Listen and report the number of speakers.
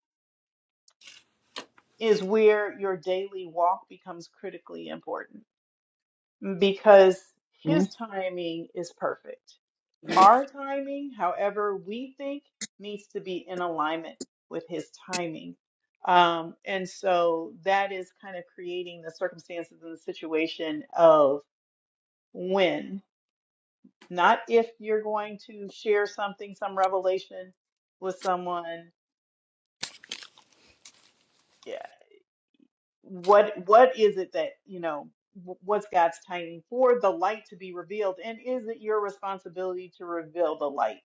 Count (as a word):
one